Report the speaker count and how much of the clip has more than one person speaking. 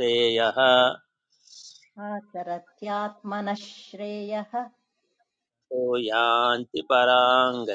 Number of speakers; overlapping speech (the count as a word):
two, no overlap